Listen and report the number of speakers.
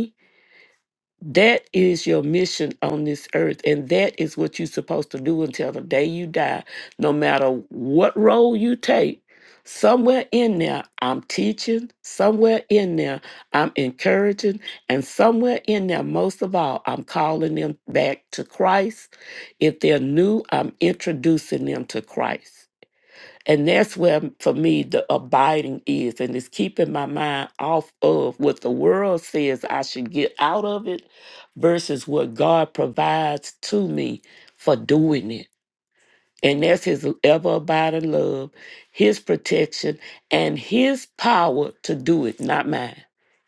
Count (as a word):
one